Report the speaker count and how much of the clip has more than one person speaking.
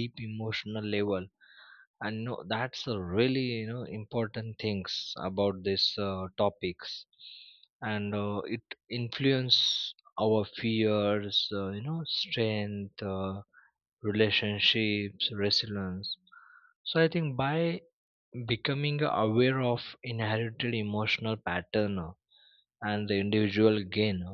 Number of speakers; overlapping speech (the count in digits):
1, no overlap